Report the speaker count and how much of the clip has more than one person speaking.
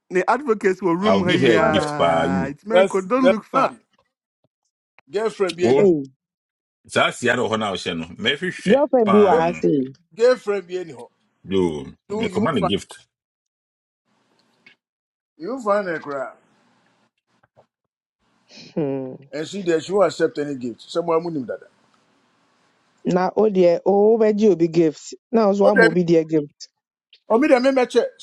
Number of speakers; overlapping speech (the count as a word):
four, about 15%